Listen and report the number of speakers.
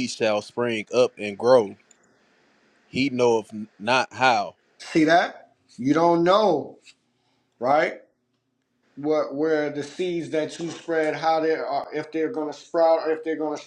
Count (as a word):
two